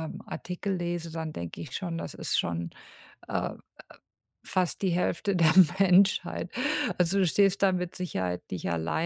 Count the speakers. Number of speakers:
1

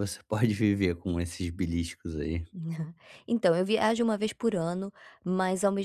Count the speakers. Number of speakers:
2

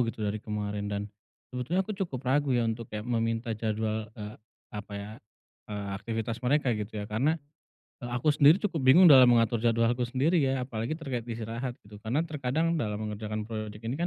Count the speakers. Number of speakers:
1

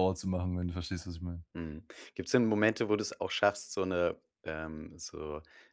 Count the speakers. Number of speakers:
2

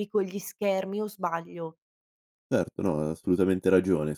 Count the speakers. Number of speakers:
2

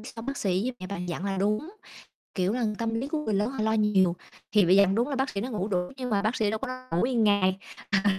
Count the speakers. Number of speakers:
1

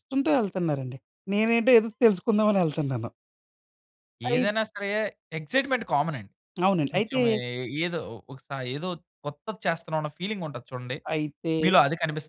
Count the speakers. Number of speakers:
2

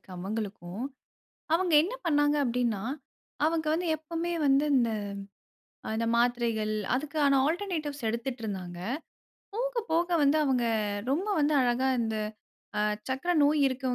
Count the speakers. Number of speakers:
1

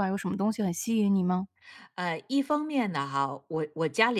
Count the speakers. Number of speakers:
2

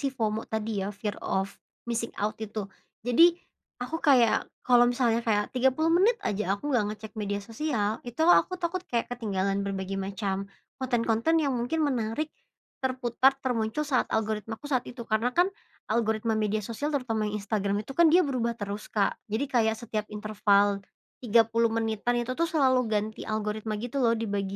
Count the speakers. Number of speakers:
1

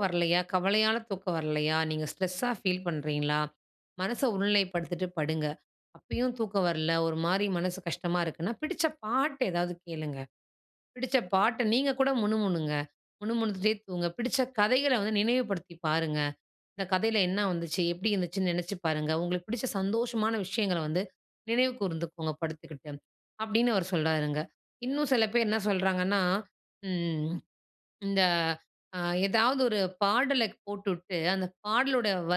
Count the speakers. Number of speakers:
1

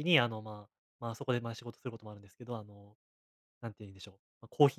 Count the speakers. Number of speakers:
1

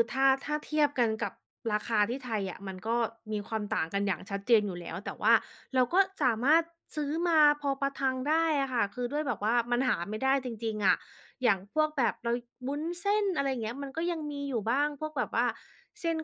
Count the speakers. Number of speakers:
1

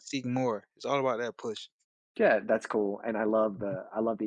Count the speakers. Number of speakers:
2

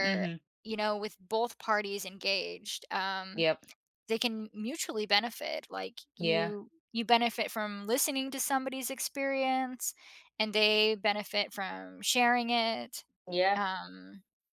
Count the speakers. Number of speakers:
2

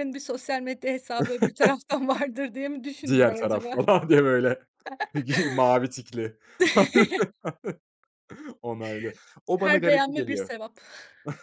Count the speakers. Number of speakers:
2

